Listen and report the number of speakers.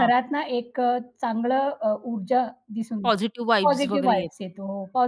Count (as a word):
two